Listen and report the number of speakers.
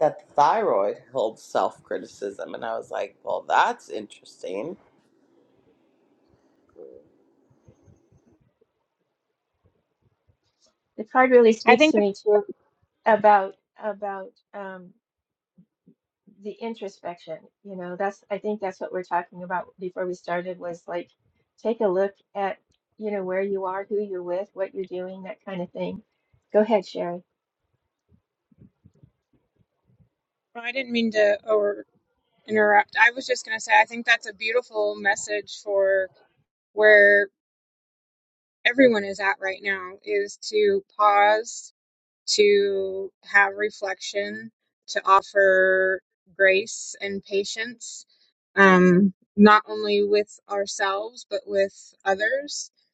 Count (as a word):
three